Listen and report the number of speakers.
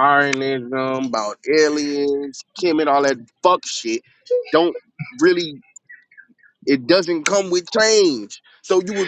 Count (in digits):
1